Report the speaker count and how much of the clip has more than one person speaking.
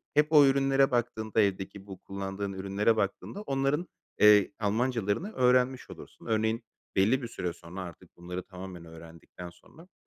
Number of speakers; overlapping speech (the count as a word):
one, no overlap